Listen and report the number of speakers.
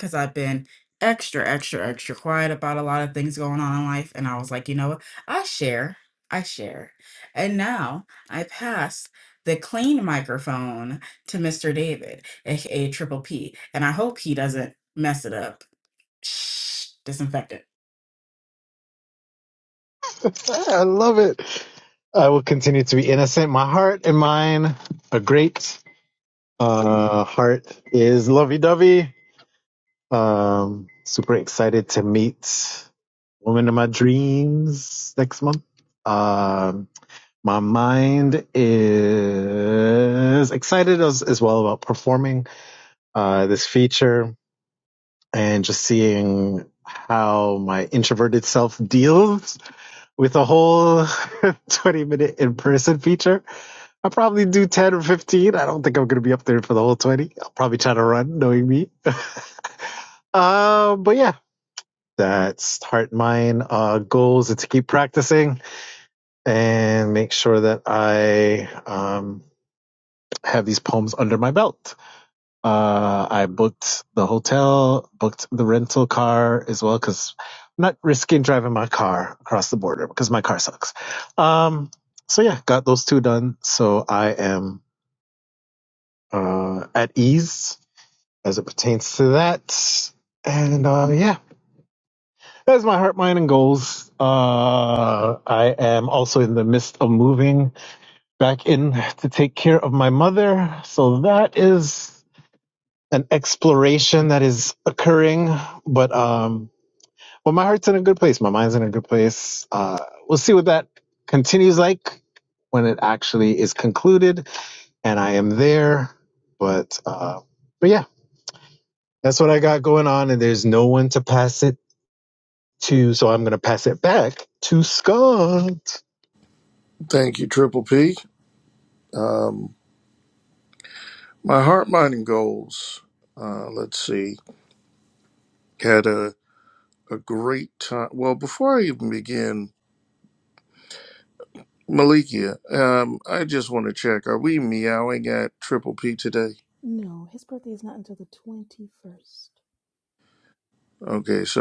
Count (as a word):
four